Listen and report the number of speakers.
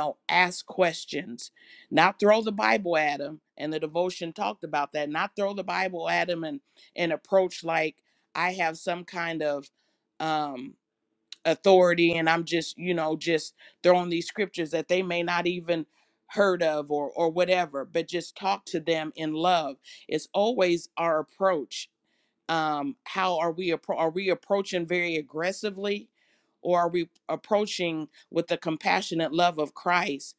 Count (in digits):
1